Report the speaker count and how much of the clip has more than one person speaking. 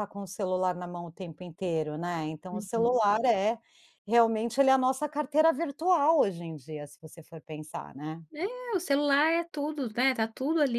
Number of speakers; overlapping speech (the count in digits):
2, about 4%